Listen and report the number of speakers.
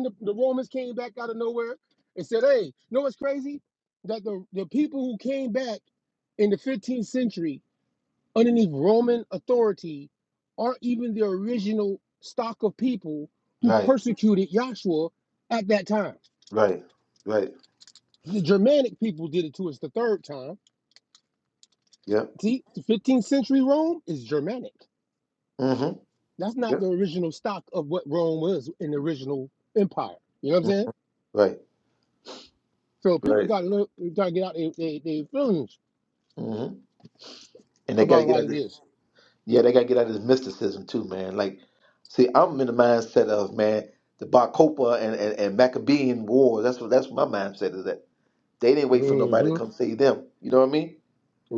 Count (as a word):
two